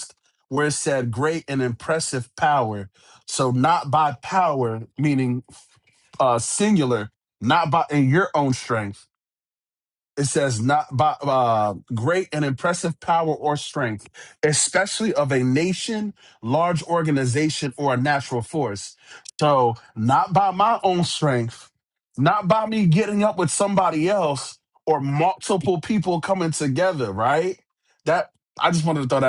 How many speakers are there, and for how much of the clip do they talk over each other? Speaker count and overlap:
one, no overlap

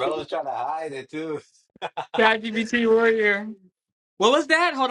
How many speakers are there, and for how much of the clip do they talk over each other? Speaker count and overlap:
two, no overlap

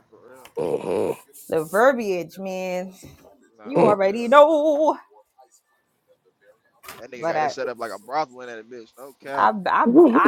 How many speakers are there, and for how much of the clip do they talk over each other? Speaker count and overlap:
three, about 16%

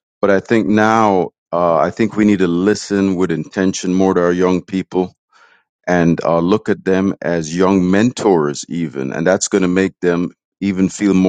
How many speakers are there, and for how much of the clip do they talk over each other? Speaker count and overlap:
one, no overlap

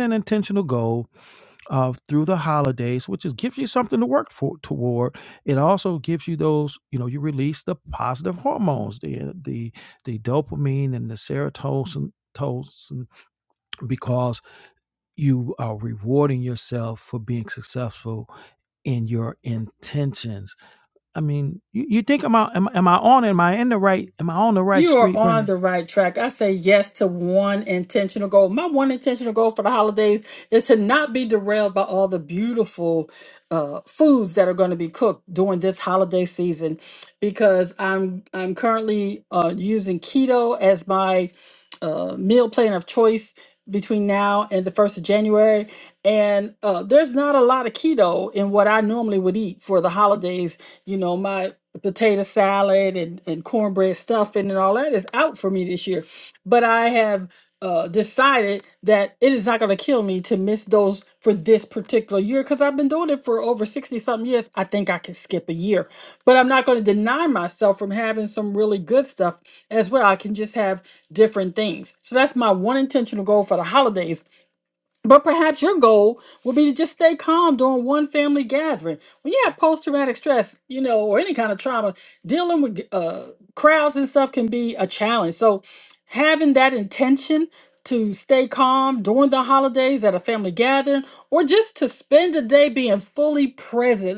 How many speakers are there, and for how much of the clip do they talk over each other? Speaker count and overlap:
two, about 1%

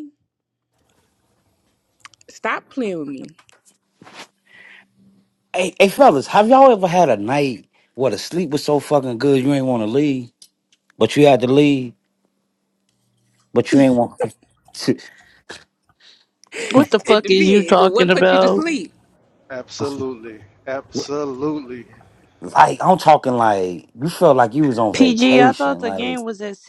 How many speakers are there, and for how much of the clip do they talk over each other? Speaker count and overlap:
four, about 10%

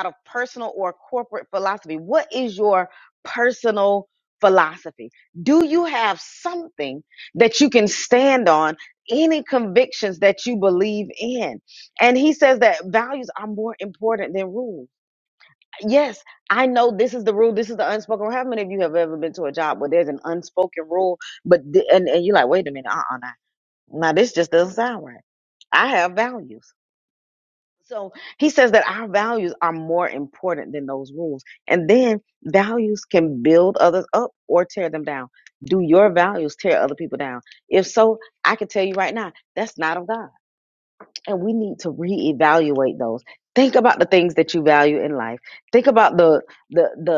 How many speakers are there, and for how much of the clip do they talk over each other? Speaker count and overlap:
one, no overlap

